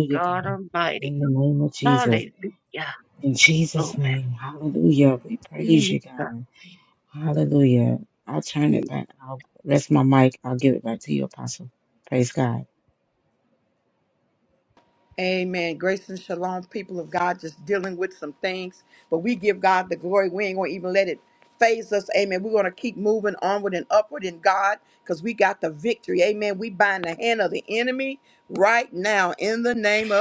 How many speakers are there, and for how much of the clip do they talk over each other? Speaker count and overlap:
3, about 4%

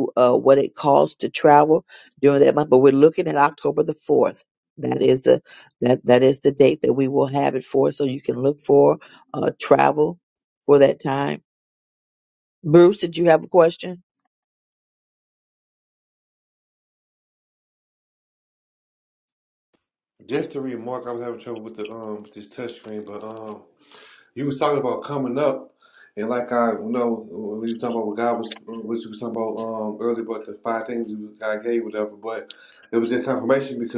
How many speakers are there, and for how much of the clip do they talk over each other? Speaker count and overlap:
2, no overlap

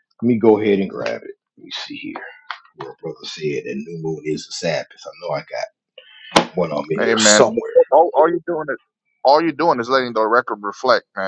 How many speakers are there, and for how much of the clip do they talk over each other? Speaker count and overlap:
2, about 4%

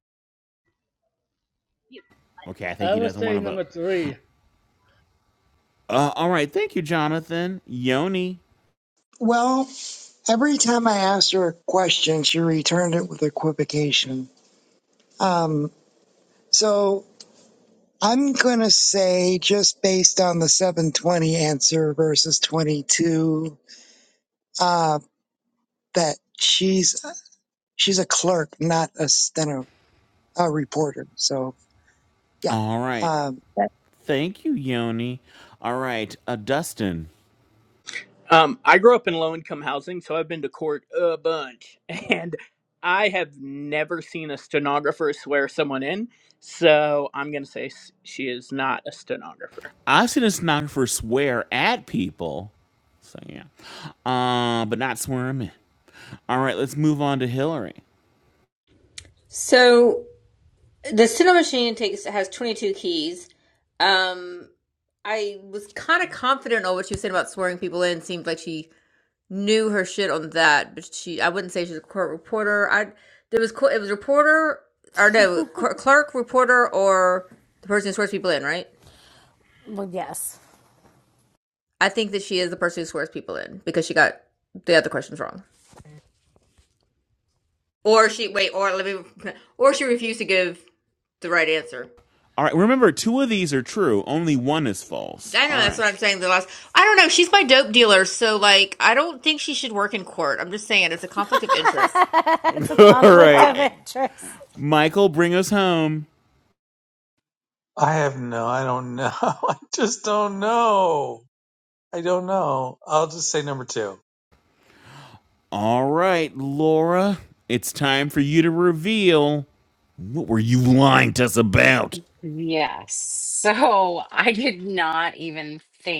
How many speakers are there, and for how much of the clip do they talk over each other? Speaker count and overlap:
8, about 2%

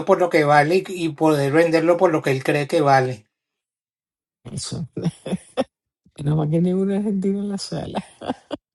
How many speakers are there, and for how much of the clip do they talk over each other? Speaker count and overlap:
2, no overlap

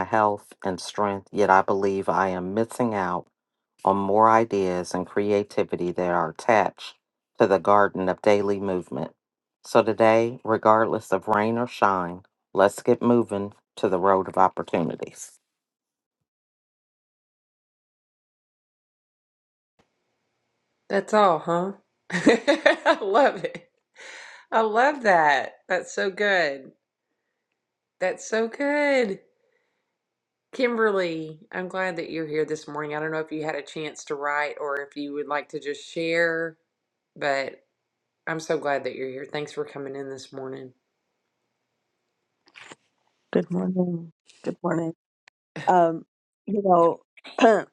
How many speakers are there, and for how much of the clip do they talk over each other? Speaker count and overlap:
3, no overlap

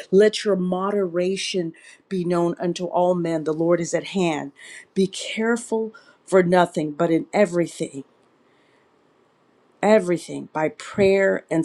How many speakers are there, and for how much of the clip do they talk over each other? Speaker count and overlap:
1, no overlap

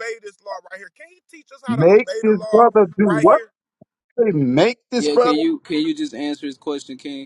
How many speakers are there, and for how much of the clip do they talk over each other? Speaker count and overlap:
3, about 24%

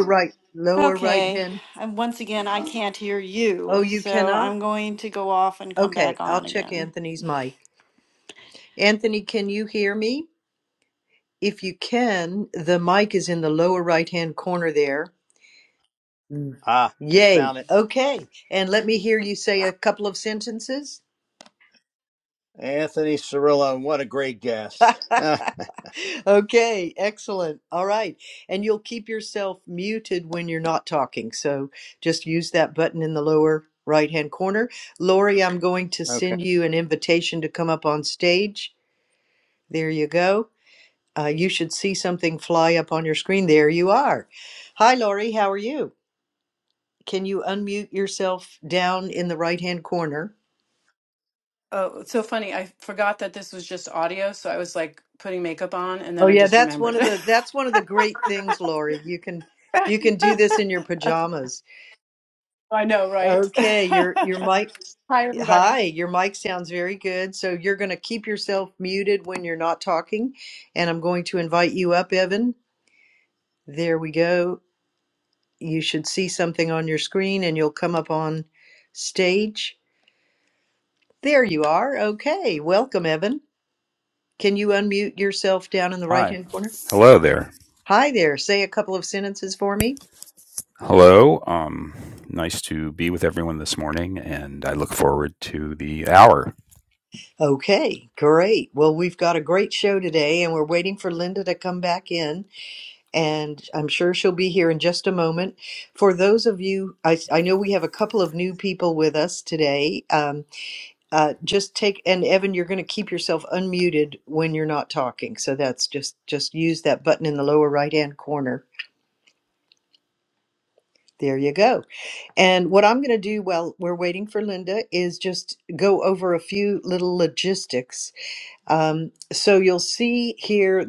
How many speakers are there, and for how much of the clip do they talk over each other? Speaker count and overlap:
5, about 5%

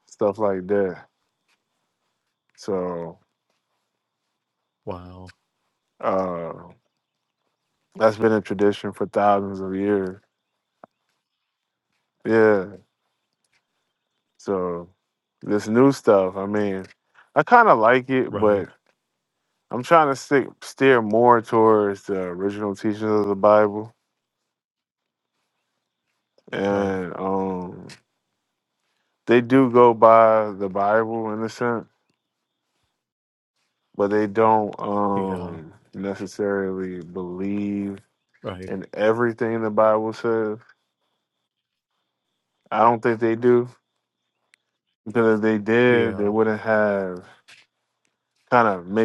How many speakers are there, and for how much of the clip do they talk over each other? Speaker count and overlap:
2, about 3%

